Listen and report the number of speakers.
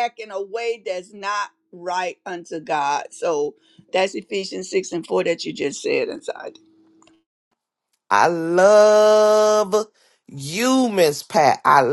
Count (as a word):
two